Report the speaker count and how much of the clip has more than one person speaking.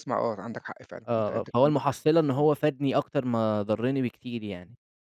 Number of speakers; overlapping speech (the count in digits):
2, about 18%